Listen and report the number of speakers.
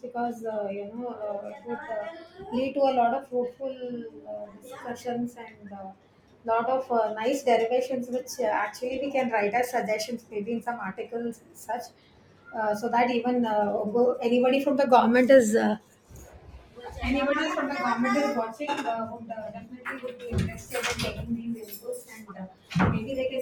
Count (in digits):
1